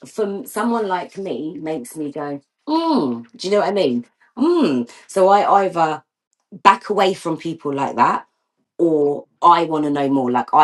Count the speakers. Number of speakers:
1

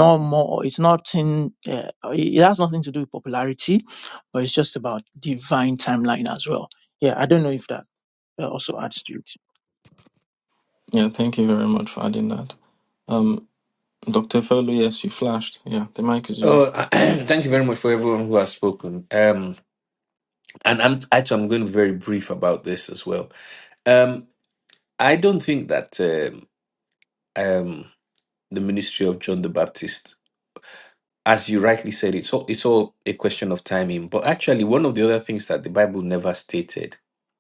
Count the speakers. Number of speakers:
3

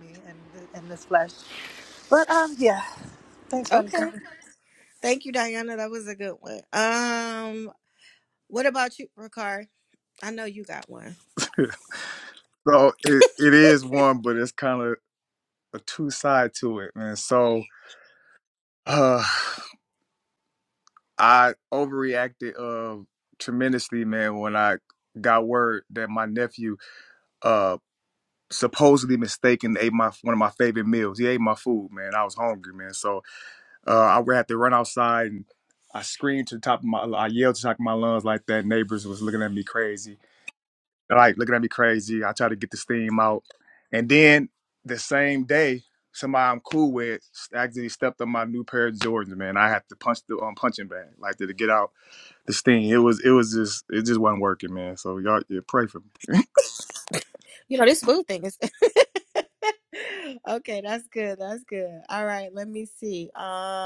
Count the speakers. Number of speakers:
3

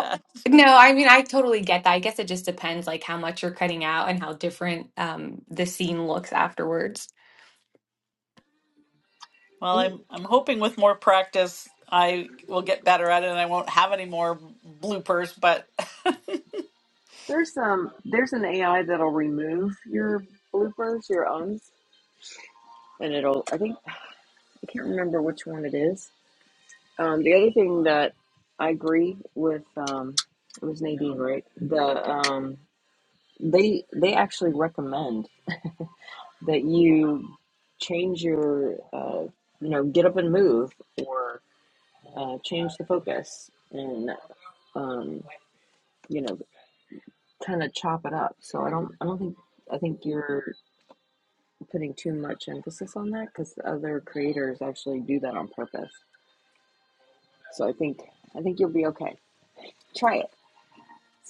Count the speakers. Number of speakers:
3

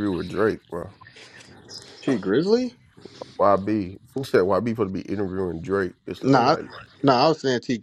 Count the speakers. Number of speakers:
2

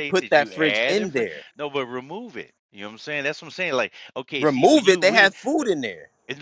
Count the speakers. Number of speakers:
2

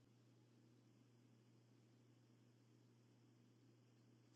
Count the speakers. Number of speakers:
0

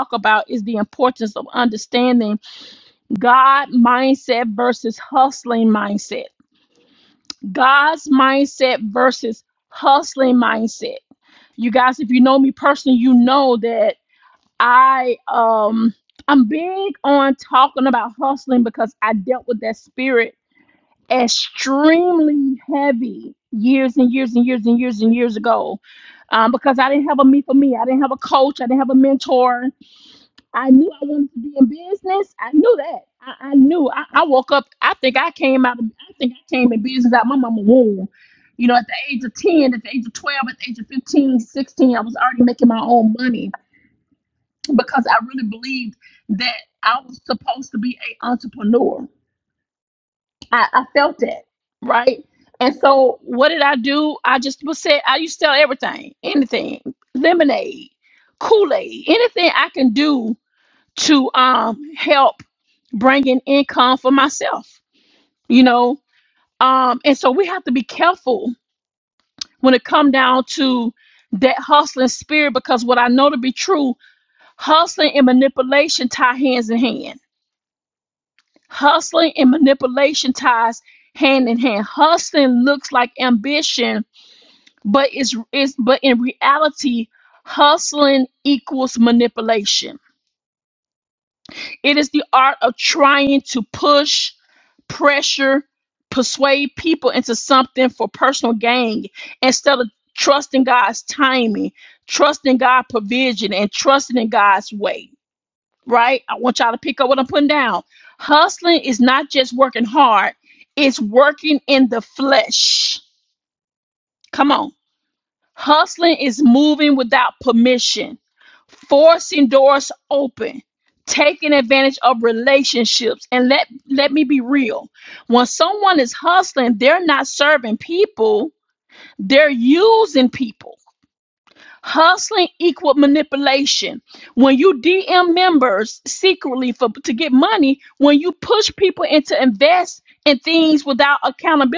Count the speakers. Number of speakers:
1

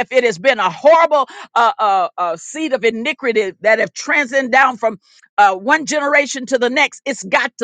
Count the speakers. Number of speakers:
1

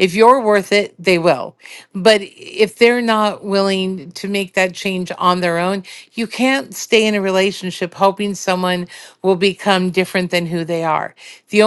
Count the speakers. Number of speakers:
1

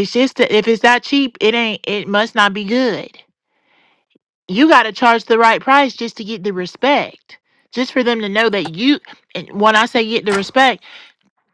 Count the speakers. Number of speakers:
1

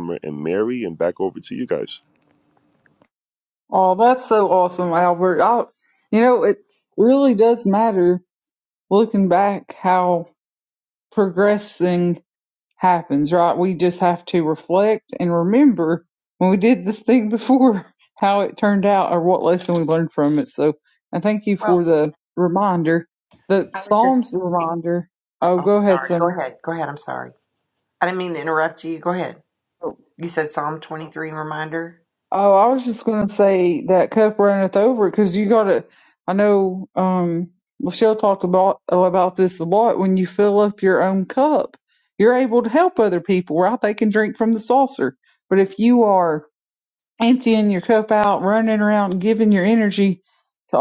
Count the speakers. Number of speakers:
3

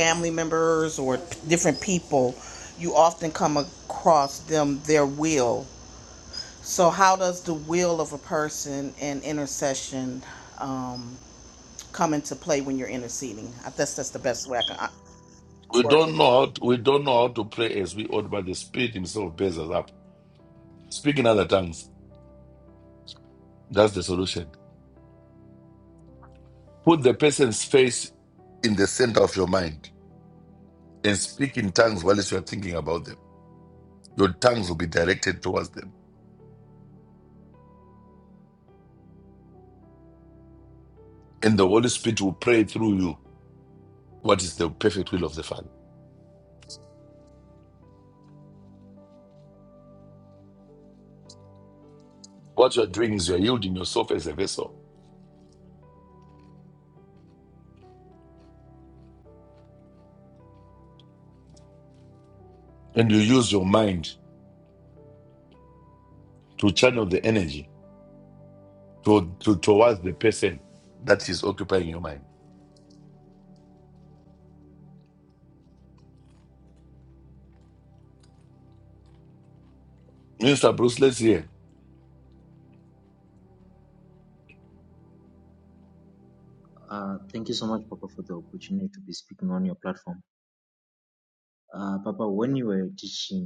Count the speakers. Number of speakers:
3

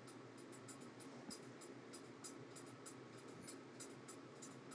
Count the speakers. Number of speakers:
0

